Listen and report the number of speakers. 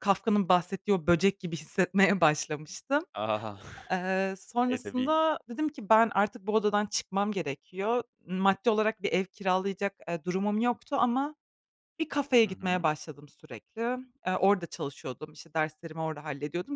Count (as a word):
two